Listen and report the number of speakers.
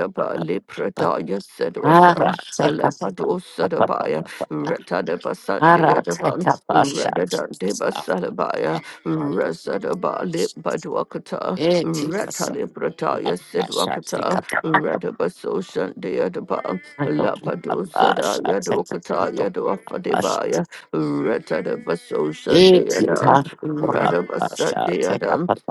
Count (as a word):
two